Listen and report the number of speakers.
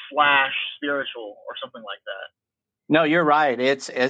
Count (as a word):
two